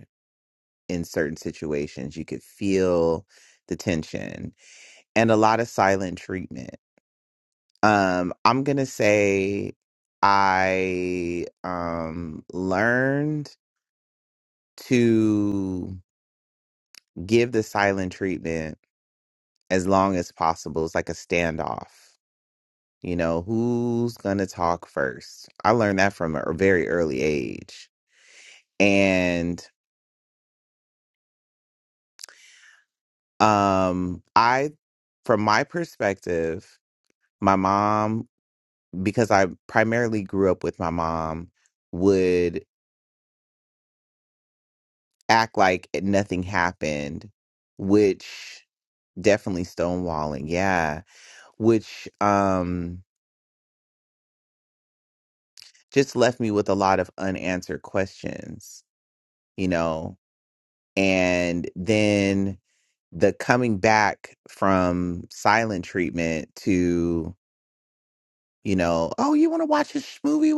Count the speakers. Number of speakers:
1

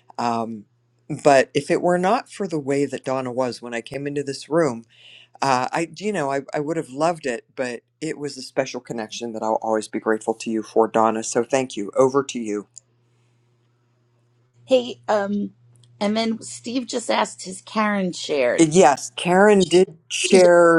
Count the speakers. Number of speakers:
2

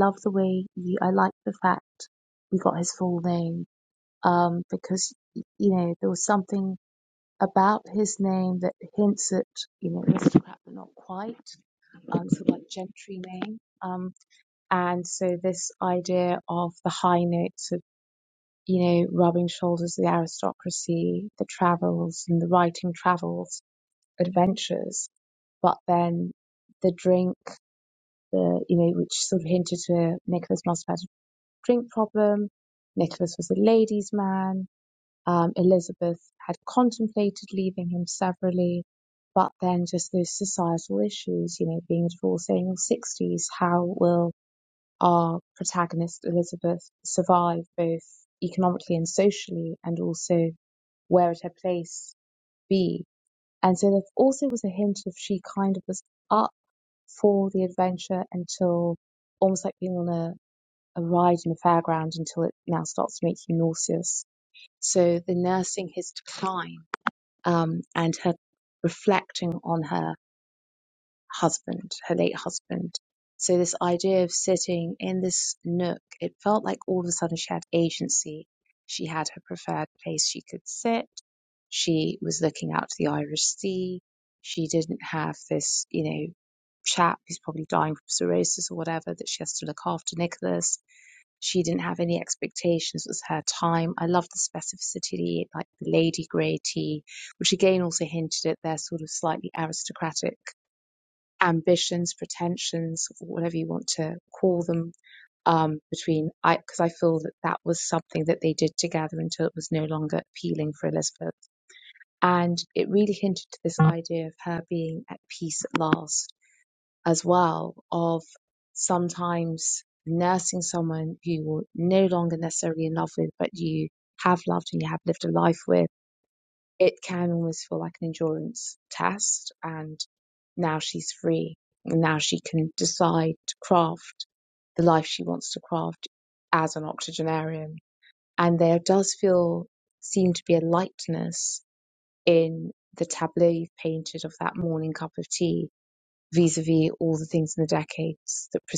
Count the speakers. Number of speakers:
1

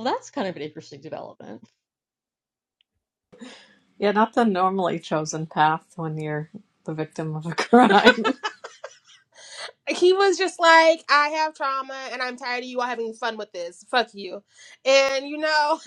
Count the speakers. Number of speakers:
3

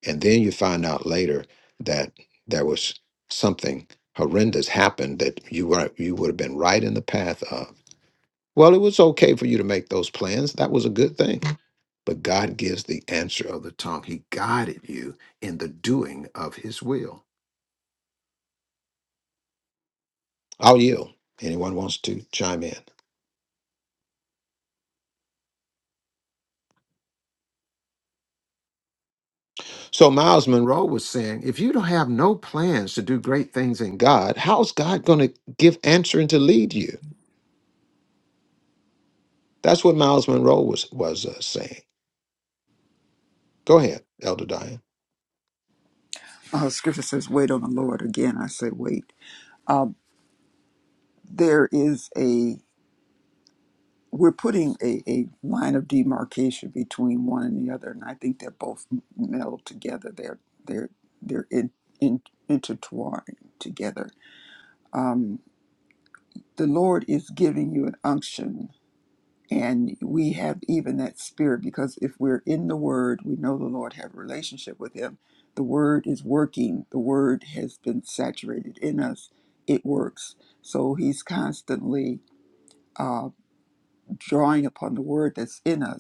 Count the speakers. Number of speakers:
2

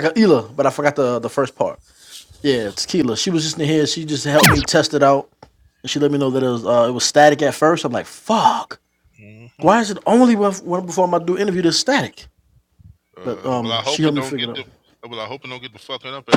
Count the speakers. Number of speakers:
2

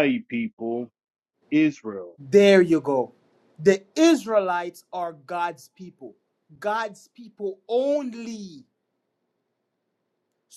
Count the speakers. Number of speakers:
2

